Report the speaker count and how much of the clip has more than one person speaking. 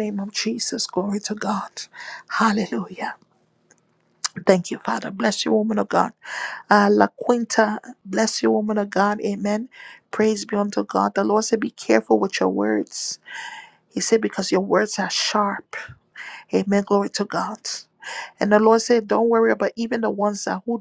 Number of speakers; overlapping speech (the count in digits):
1, no overlap